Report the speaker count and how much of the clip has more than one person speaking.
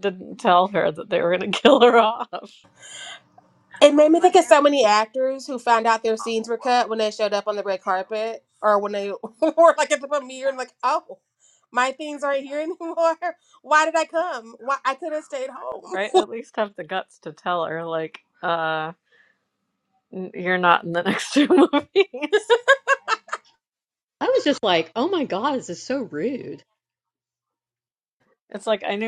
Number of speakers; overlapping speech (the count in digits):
3, under 1%